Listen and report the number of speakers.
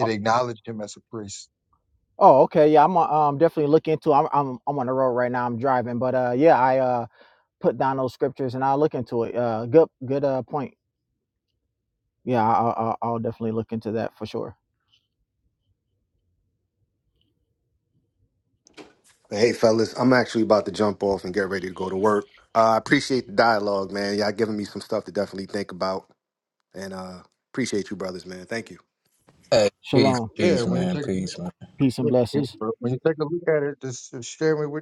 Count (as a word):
four